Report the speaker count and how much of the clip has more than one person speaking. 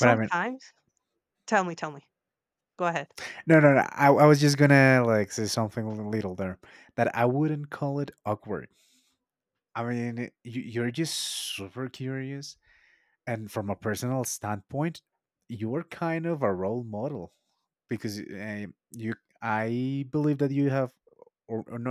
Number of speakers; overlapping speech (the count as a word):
two, about 1%